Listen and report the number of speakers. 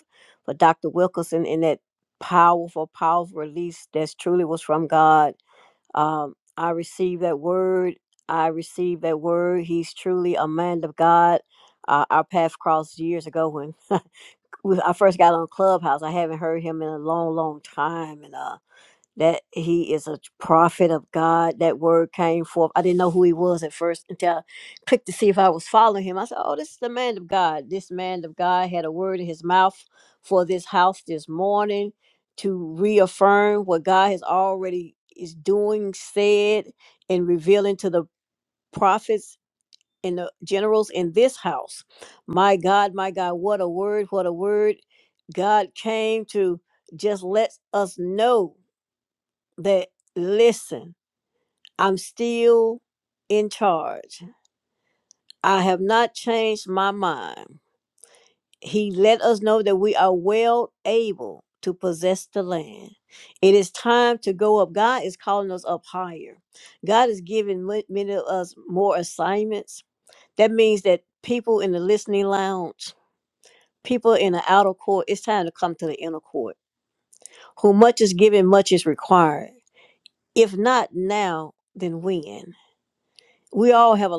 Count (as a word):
one